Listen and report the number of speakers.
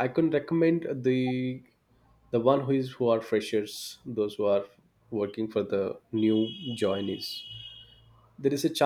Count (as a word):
one